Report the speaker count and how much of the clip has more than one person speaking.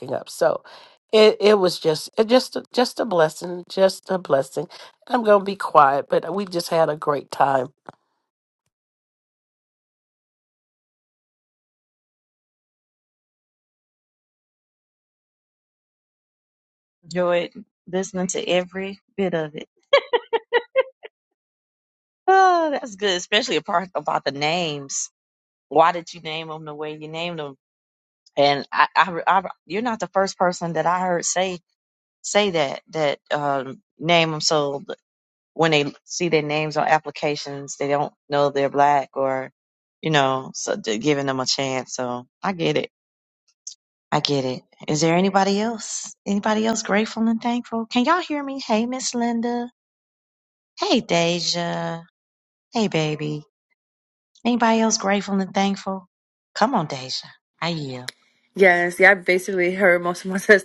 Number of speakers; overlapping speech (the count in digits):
3, no overlap